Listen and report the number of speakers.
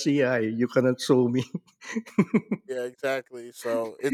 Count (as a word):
two